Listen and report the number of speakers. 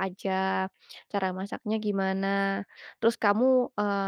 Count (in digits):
1